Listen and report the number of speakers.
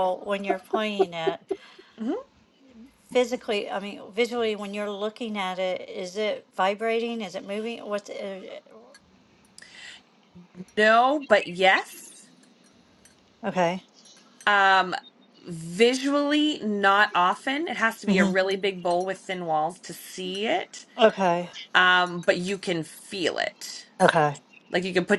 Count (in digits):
2